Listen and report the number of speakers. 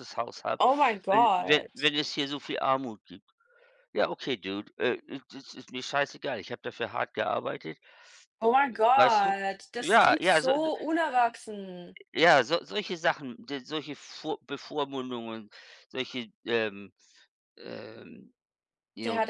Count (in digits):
2